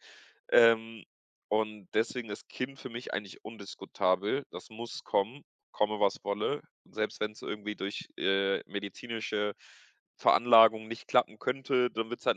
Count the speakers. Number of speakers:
one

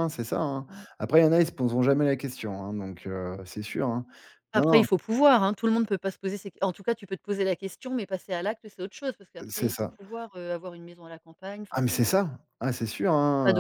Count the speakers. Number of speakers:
two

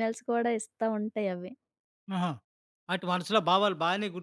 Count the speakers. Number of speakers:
two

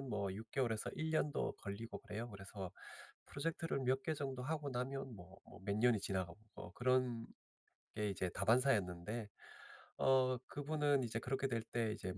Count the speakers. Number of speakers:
one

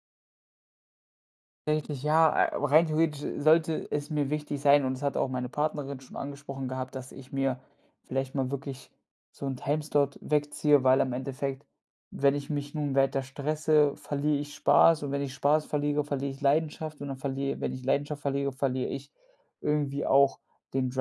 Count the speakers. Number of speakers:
one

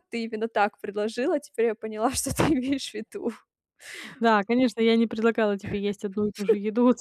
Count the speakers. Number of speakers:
two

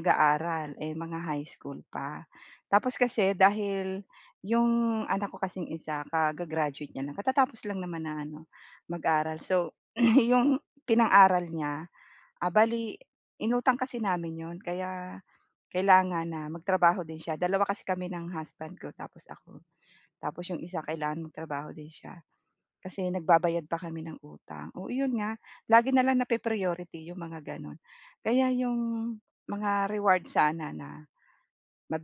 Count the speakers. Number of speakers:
one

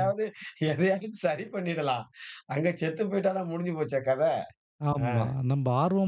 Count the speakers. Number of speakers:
two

